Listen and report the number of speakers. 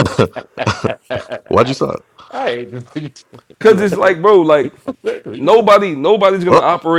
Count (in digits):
3